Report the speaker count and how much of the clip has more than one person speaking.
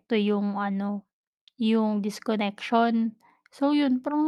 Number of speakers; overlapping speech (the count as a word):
one, no overlap